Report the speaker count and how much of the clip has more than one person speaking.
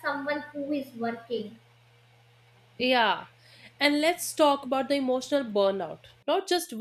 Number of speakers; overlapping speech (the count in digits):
2, no overlap